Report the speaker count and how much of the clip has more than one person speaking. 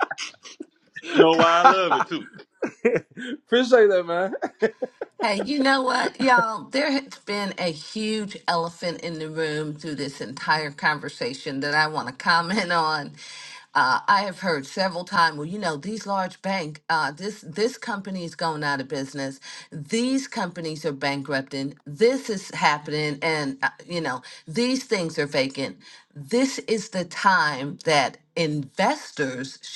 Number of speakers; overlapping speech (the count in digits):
3, no overlap